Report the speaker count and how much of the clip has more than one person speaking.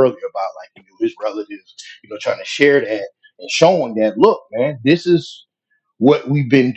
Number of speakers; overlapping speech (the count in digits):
1, no overlap